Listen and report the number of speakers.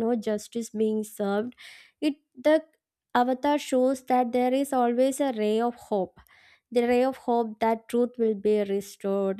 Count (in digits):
1